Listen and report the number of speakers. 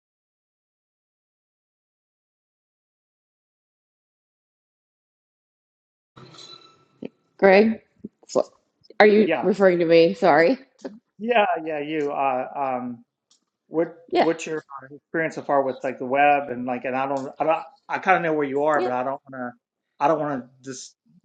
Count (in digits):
2